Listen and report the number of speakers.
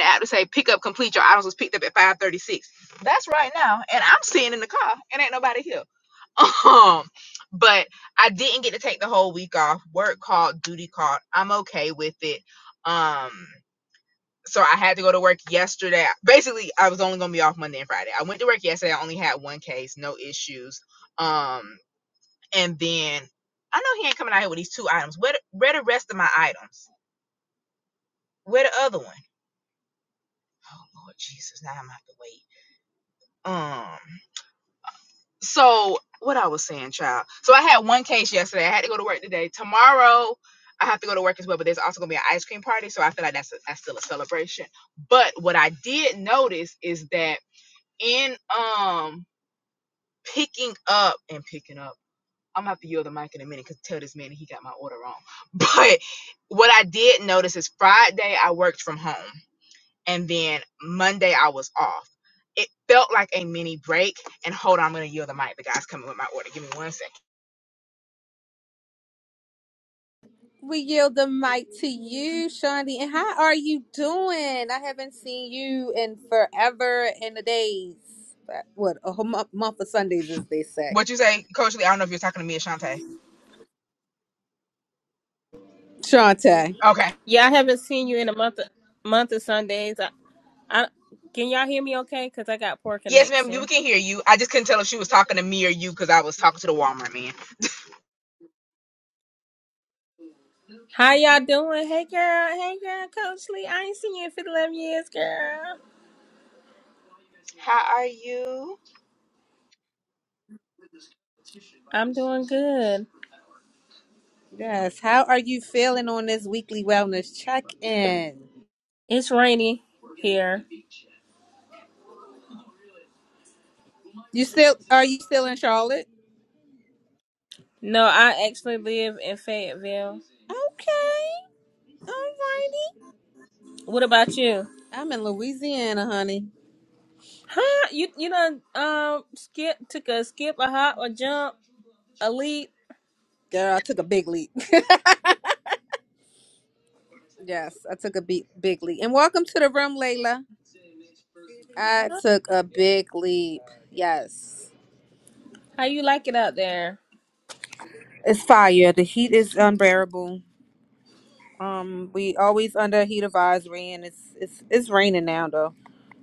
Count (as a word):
three